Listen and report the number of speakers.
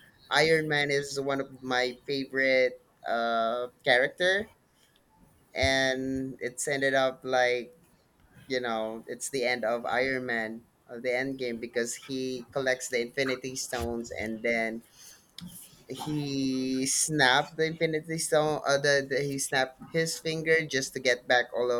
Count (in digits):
1